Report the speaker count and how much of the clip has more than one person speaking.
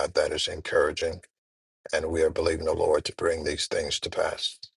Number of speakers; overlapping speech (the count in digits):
1, no overlap